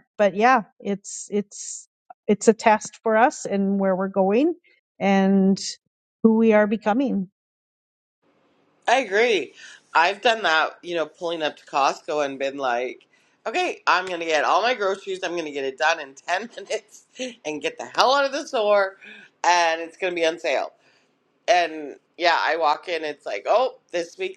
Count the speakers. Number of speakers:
2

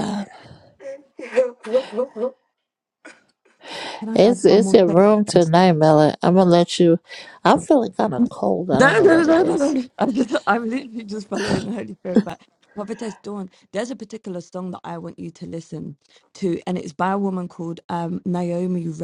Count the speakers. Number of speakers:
3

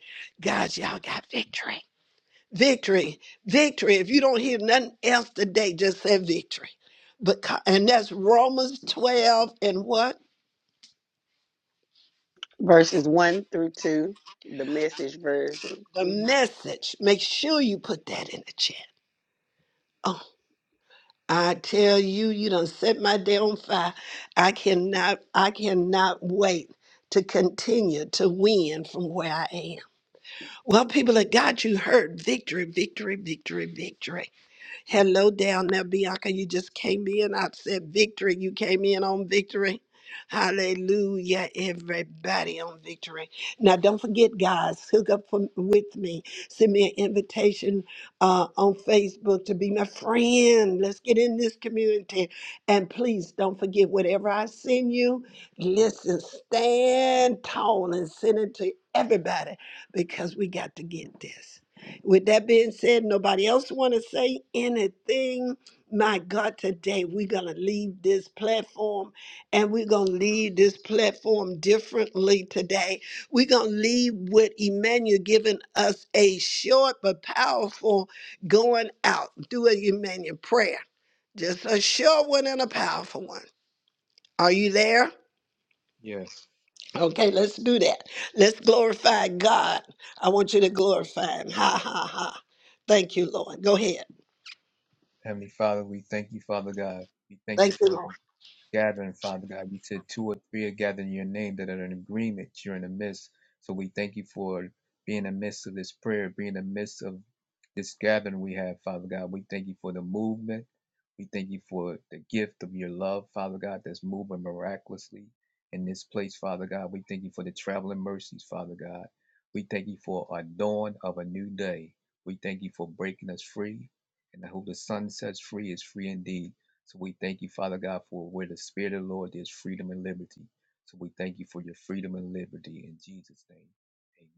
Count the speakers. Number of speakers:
3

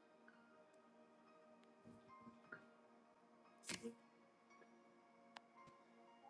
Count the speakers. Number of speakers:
0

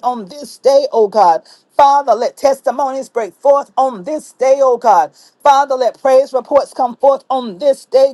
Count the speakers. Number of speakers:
1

